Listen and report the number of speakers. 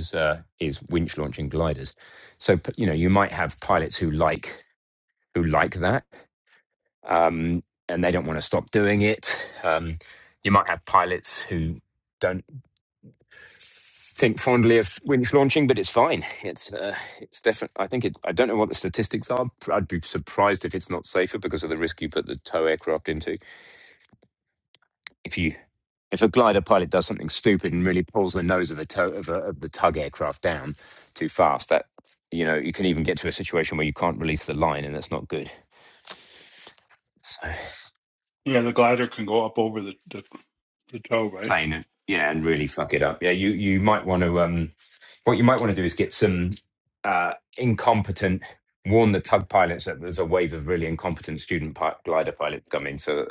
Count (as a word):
two